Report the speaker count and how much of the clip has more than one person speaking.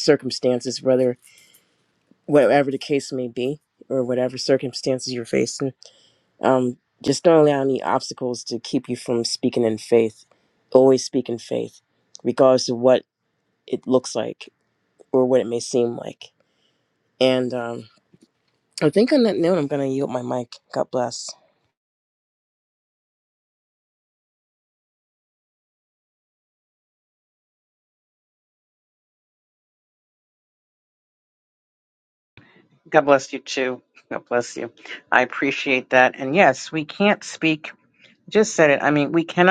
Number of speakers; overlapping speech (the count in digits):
2, no overlap